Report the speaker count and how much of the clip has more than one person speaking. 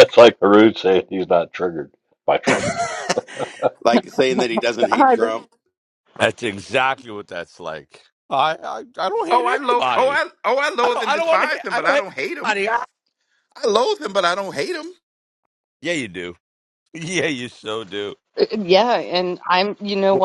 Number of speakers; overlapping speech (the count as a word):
five, about 13%